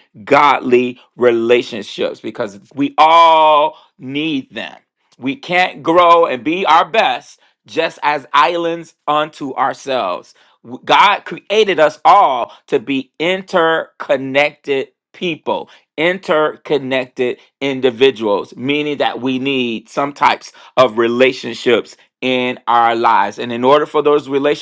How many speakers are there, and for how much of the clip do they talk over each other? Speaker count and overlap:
1, no overlap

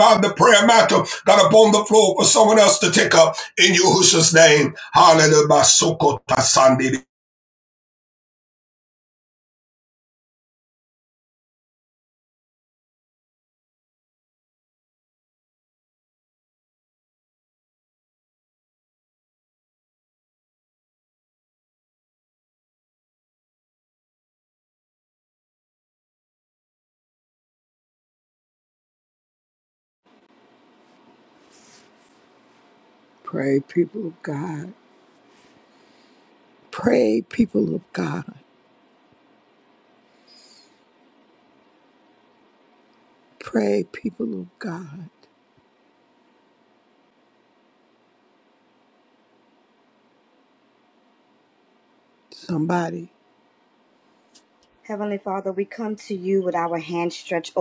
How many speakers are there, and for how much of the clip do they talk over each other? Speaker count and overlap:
3, no overlap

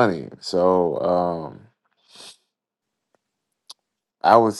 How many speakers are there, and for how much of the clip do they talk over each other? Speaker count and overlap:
1, no overlap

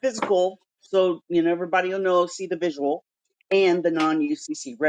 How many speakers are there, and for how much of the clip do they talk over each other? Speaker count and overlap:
1, no overlap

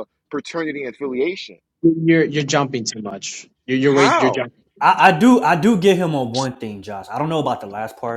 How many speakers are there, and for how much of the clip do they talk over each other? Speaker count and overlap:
3, about 7%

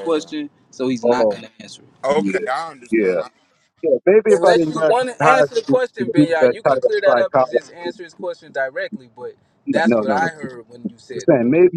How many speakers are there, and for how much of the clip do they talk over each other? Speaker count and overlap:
3, about 43%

